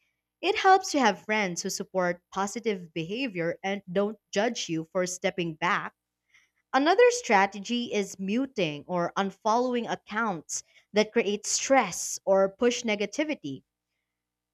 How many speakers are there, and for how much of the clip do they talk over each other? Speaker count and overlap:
1, no overlap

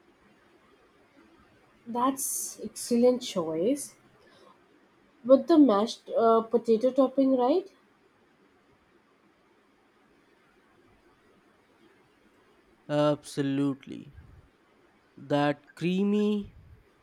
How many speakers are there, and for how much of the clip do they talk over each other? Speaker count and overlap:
2, no overlap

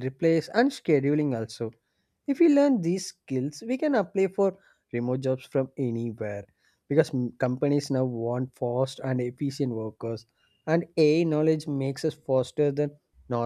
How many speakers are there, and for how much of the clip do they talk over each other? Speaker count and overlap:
1, no overlap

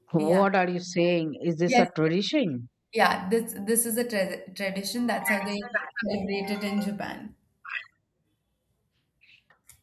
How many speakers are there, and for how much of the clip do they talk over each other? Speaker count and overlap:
2, about 7%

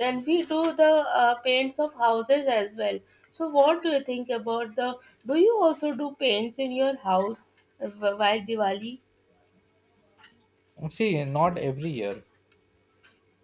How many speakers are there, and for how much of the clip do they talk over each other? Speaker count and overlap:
2, no overlap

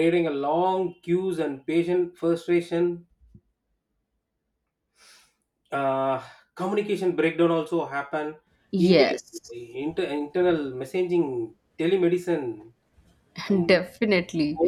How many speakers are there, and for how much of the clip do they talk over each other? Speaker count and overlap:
2, about 4%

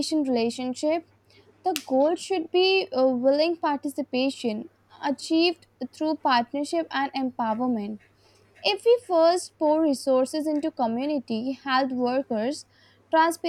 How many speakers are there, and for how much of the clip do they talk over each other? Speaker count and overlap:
1, no overlap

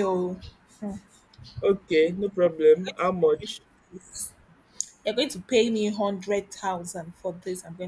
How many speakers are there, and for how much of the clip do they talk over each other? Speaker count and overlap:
2, about 3%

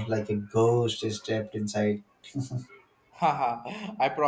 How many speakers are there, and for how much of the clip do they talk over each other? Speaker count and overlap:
2, no overlap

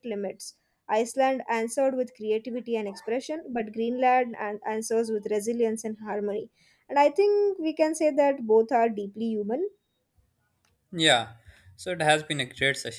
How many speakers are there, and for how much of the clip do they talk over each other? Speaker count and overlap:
2, no overlap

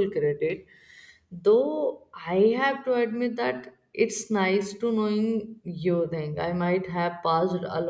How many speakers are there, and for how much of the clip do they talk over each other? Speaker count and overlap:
1, no overlap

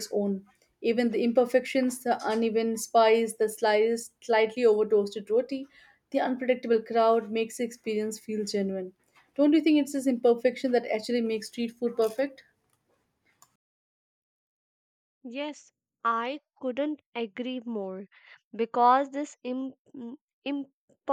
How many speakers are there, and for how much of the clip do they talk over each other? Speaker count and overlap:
2, no overlap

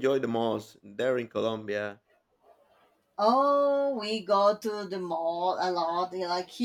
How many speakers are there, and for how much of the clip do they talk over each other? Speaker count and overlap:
2, no overlap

